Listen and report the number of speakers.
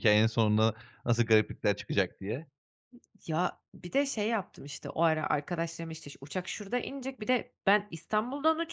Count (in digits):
2